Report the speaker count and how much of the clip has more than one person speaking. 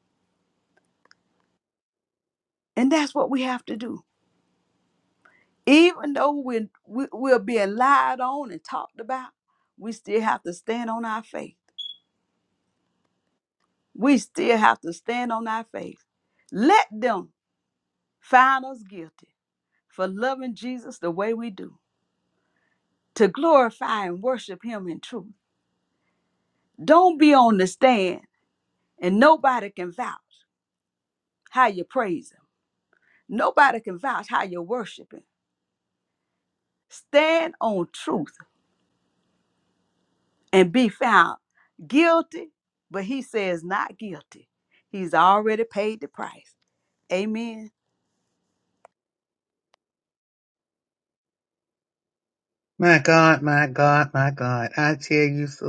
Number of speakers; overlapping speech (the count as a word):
two, no overlap